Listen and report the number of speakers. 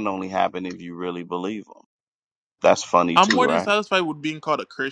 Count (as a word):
two